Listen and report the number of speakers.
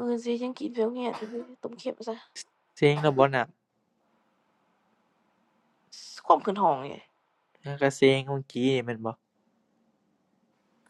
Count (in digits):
2